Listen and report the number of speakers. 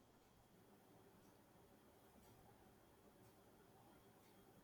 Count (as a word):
zero